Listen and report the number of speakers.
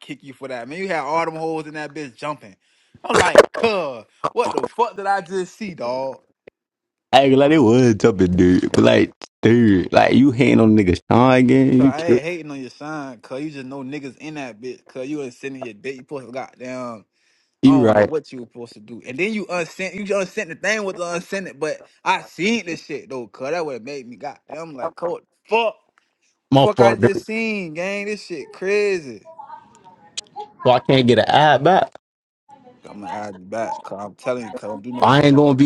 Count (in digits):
2